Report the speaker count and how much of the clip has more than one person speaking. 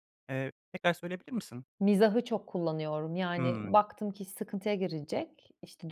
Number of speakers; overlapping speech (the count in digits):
2, about 7%